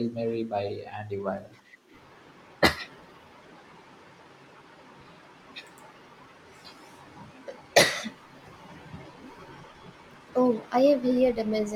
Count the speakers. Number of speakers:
2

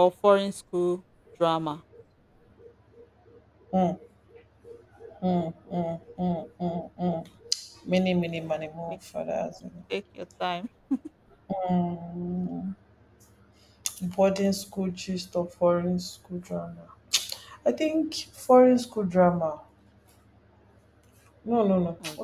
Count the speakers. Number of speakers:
2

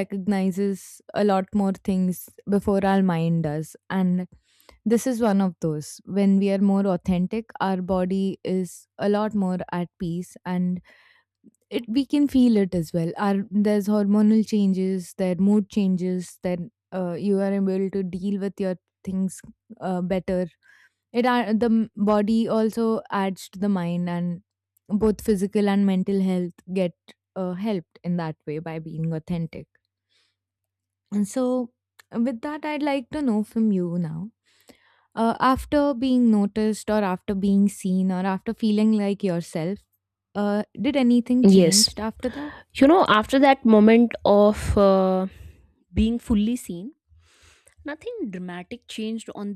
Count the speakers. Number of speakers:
2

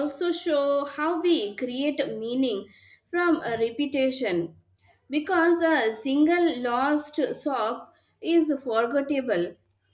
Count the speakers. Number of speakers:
1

